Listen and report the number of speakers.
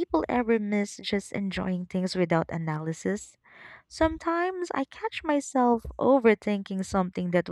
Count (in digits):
1